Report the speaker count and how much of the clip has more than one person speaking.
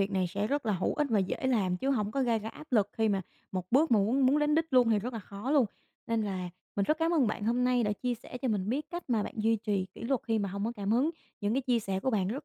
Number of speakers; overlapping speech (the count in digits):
1, no overlap